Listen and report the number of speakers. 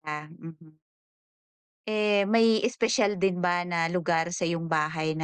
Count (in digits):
1